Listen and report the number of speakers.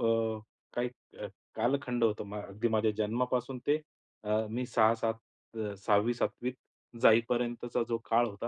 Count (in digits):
1